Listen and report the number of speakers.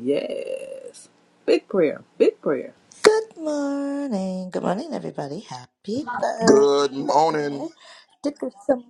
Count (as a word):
three